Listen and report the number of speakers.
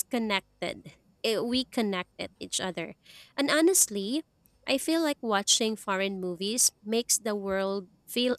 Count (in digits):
1